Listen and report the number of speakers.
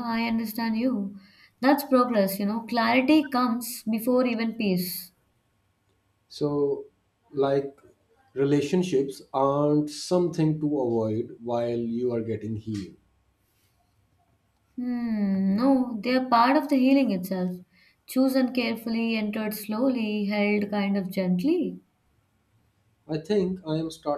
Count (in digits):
2